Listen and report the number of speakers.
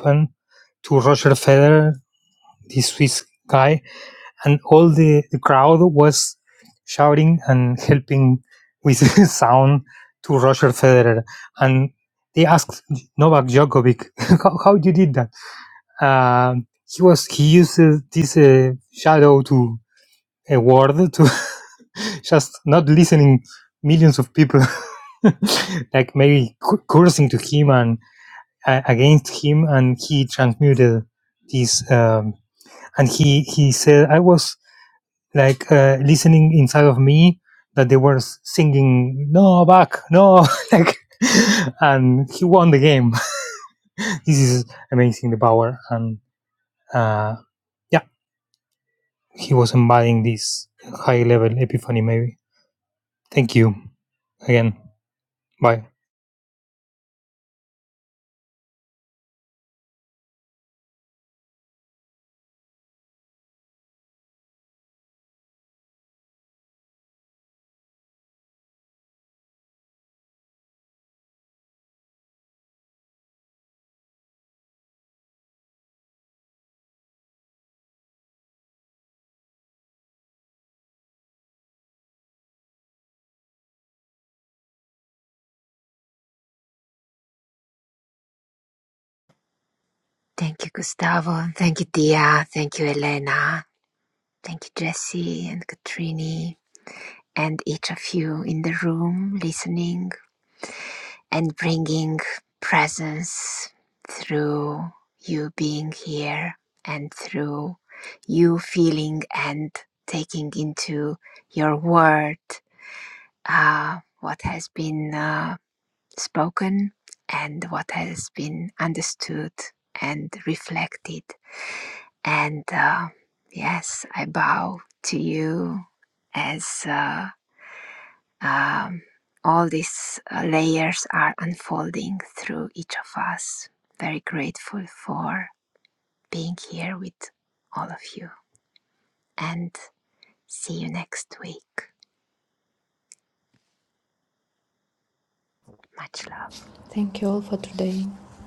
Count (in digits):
3